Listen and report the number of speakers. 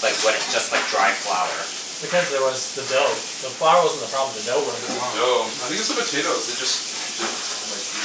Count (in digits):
3